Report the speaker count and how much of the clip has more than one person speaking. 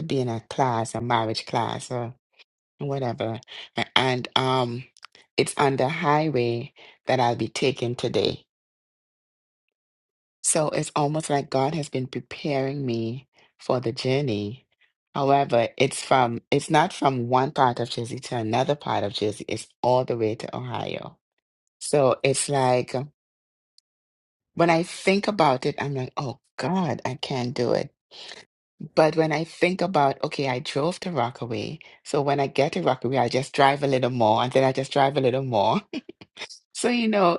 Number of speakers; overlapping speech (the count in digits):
1, no overlap